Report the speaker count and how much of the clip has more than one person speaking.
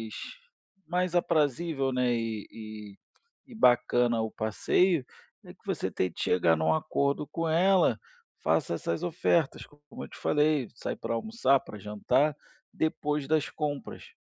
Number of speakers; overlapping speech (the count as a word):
one, no overlap